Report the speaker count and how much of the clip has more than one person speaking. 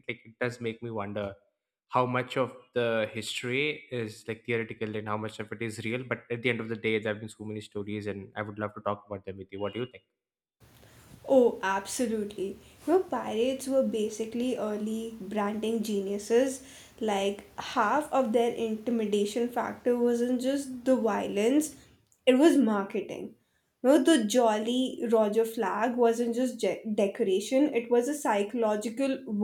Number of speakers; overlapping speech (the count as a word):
two, no overlap